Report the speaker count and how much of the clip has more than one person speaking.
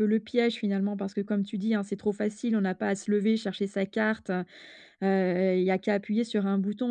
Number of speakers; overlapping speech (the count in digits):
1, no overlap